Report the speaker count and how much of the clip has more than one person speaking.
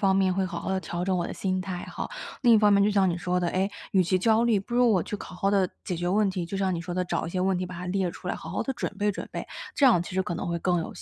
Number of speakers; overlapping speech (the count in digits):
1, no overlap